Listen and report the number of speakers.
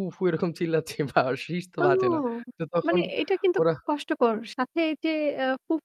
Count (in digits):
2